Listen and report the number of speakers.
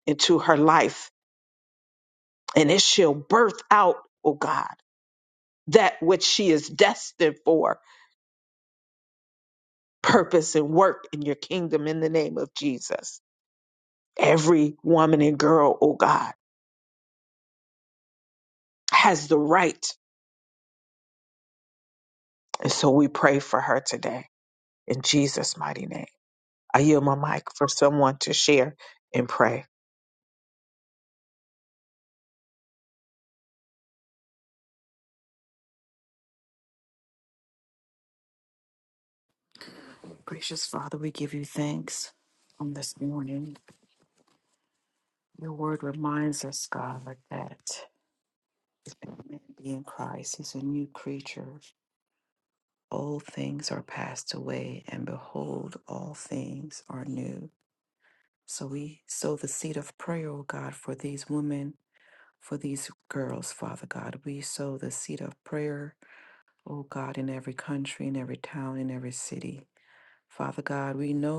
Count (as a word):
two